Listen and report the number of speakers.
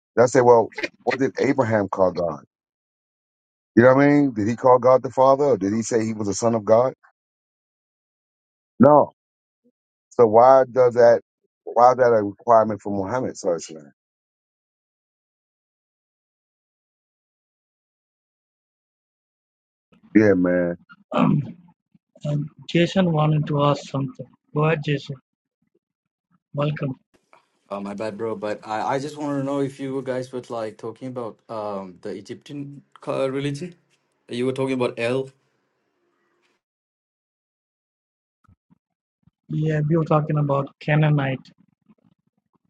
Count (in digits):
3